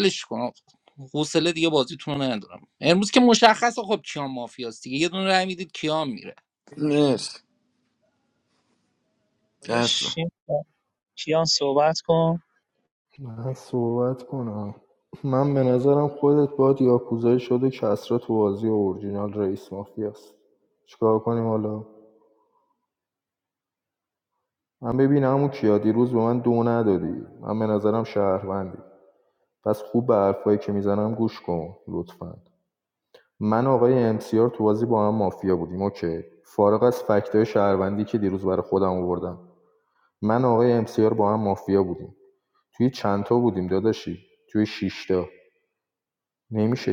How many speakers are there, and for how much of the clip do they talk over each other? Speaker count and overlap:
4, about 1%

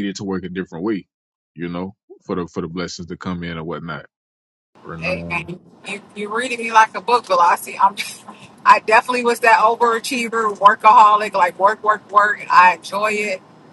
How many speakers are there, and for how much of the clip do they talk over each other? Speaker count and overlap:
2, about 3%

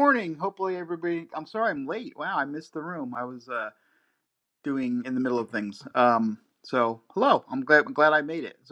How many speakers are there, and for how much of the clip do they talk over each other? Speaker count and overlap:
1, no overlap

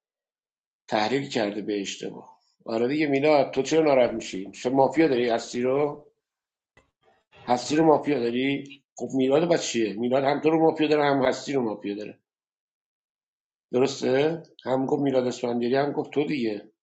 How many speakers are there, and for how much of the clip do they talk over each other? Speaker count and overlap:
1, no overlap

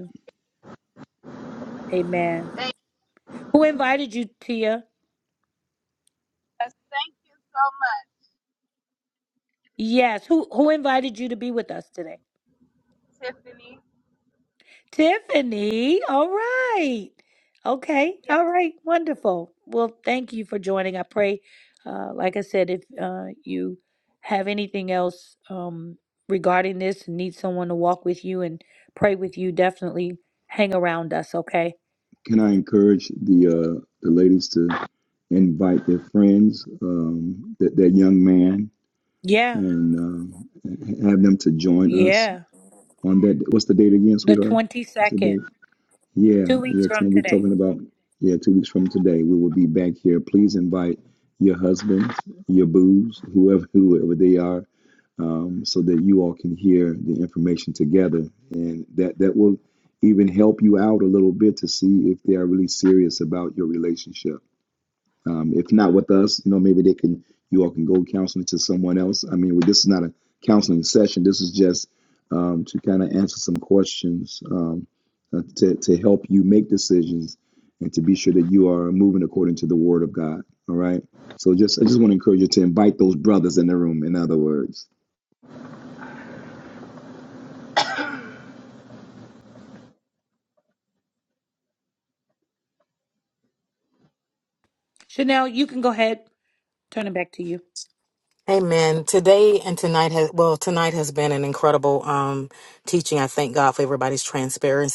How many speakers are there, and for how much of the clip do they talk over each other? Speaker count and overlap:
4, about 2%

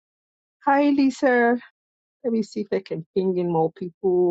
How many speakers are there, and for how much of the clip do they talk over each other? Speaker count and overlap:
1, no overlap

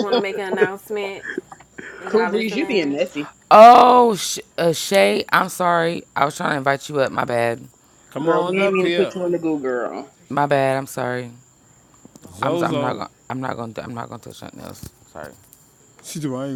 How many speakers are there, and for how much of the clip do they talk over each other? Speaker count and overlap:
4, about 15%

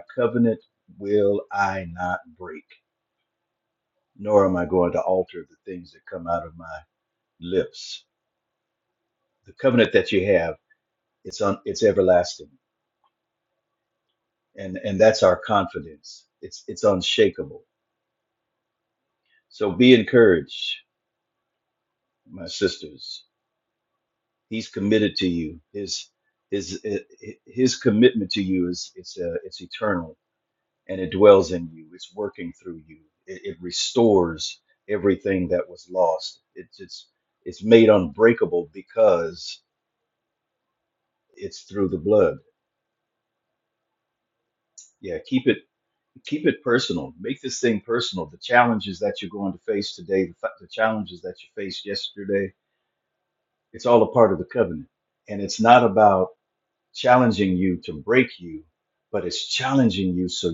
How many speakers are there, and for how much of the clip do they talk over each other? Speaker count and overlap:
1, no overlap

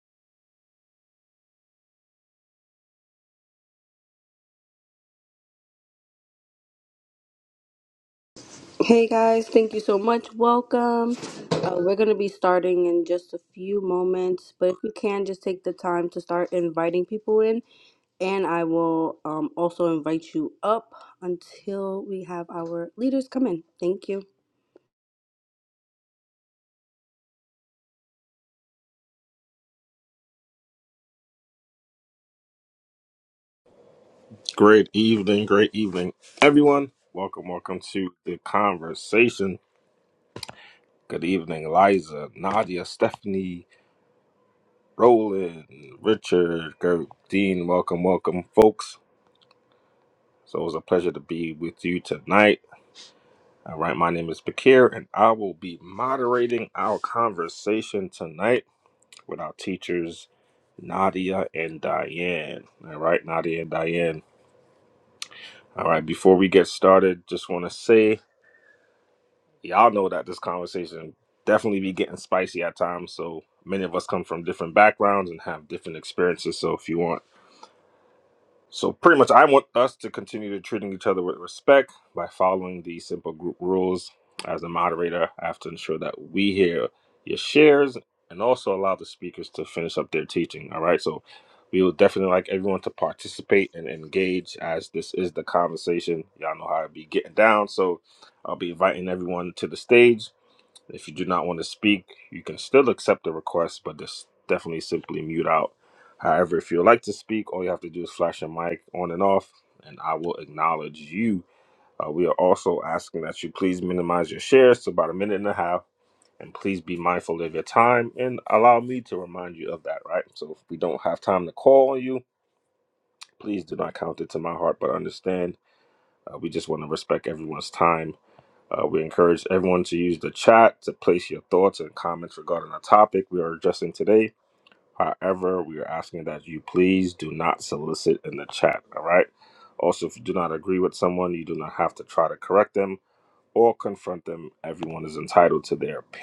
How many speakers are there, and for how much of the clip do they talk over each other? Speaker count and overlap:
2, no overlap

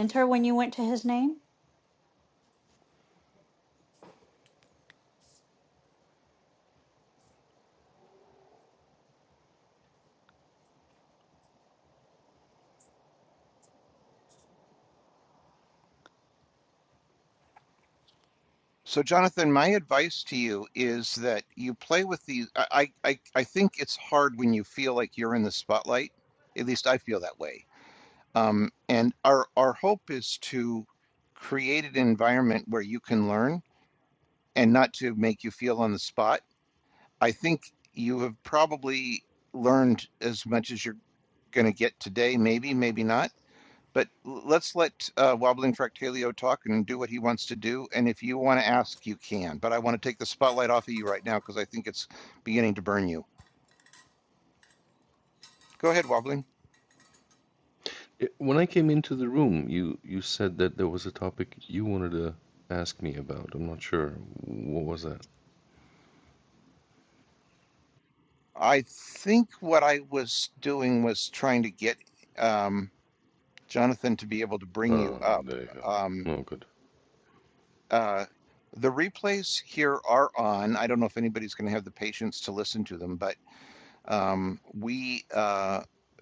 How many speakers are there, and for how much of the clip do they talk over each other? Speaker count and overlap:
3, about 1%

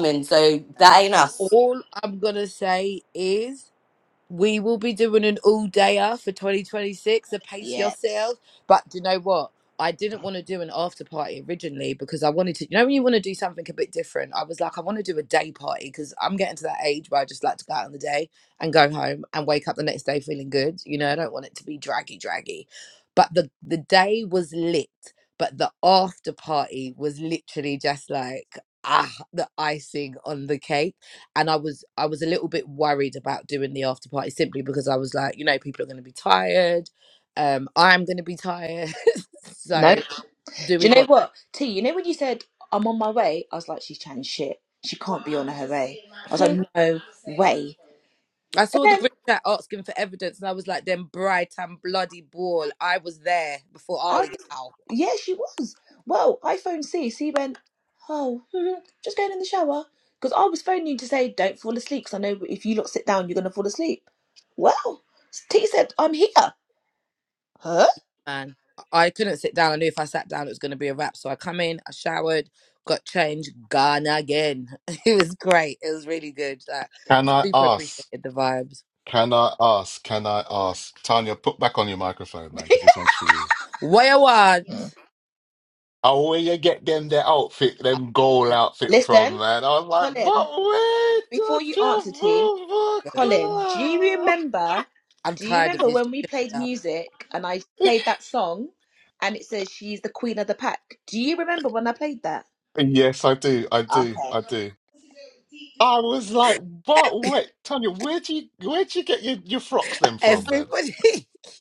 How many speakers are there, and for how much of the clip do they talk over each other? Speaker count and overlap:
4, about 7%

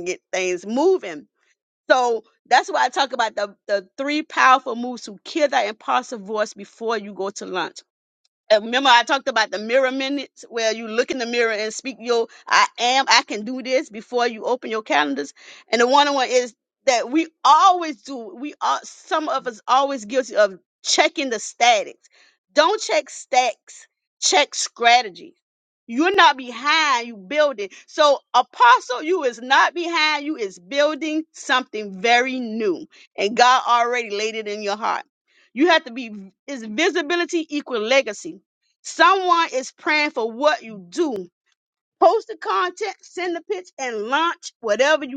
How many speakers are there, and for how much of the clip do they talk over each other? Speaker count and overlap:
1, no overlap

